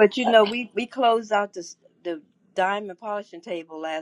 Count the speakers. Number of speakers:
one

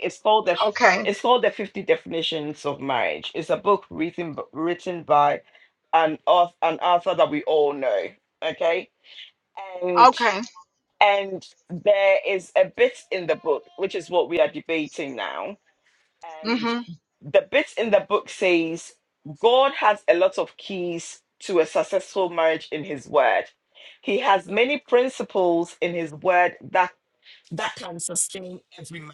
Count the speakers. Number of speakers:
two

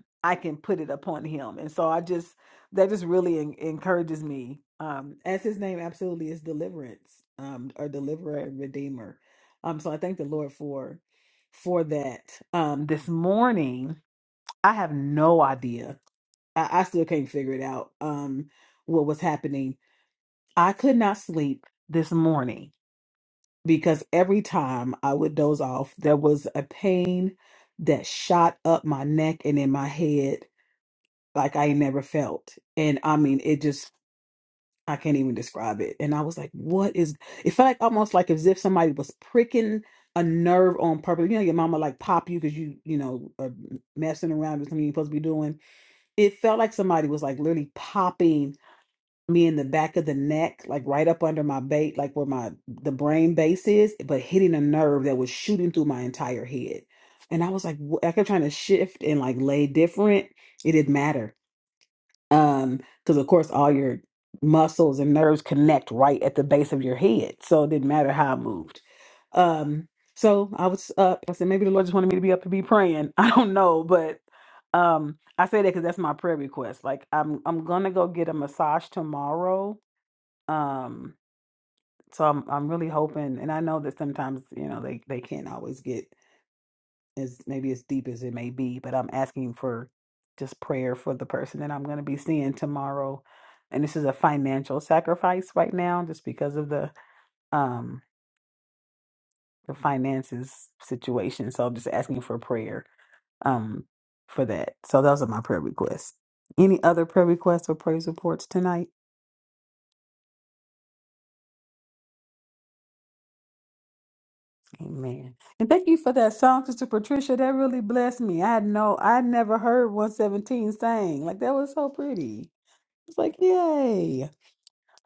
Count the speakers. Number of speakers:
one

